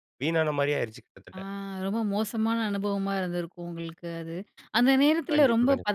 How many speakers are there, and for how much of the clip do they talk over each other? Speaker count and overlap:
two, about 11%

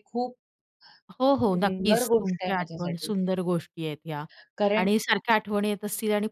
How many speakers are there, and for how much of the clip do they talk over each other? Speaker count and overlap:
two, about 28%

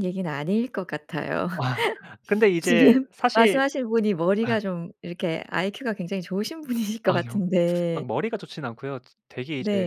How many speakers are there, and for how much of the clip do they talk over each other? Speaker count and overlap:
two, about 14%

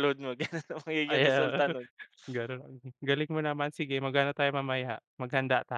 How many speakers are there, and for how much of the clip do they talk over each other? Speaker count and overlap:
two, about 10%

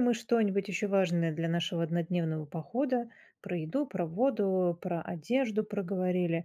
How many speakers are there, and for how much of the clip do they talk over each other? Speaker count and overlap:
one, no overlap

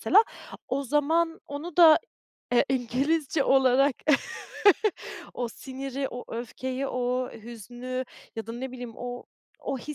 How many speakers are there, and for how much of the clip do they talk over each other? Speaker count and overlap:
one, no overlap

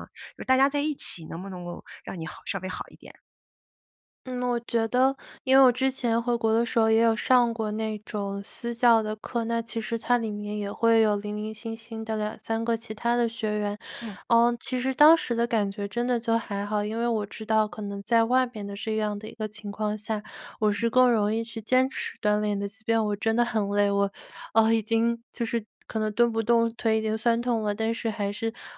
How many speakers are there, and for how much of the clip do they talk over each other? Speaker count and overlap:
two, under 1%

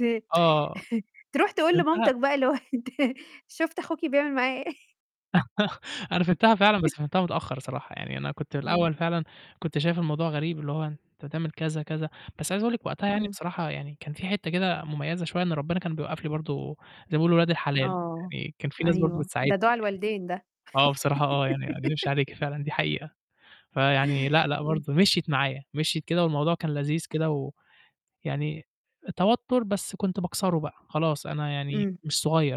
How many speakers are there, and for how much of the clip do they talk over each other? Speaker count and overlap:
two, about 6%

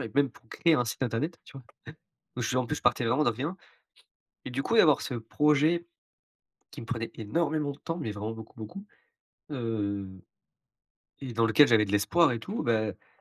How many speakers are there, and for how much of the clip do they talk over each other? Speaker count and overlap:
one, no overlap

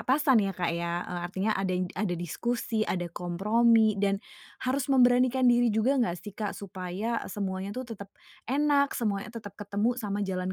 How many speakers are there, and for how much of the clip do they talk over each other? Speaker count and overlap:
one, no overlap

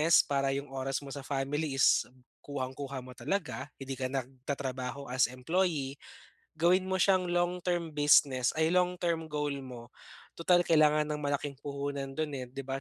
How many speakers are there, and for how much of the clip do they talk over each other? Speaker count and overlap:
one, no overlap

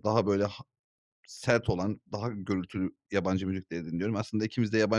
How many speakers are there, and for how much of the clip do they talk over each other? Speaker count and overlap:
one, no overlap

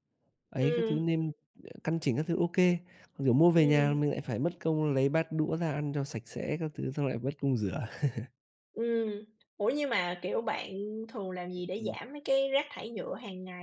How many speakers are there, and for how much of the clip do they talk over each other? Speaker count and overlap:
two, about 9%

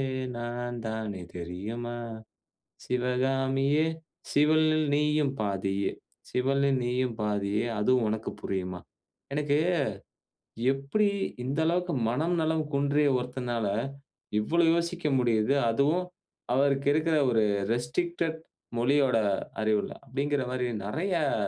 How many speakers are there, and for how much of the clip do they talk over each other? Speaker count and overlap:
one, no overlap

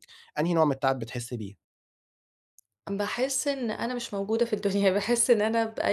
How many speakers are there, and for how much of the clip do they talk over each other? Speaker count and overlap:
two, no overlap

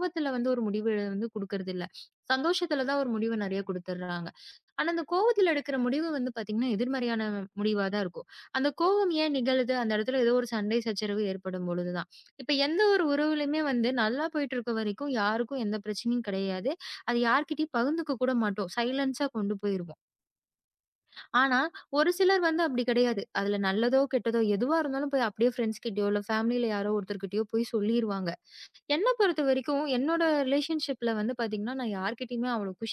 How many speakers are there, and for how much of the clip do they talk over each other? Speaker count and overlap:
one, no overlap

